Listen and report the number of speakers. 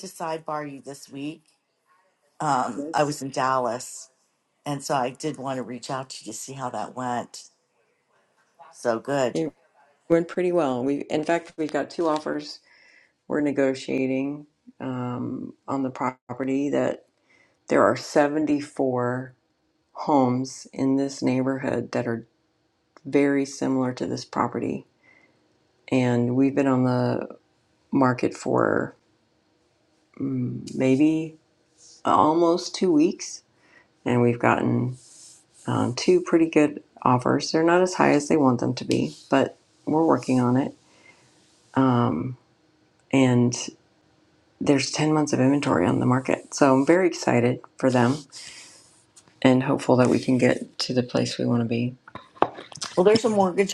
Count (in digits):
2